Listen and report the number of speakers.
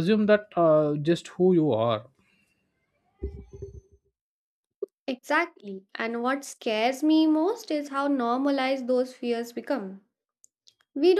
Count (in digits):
2